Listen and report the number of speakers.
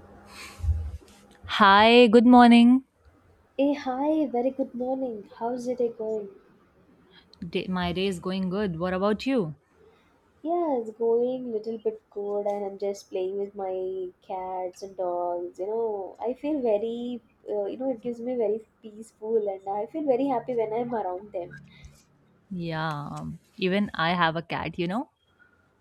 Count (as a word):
two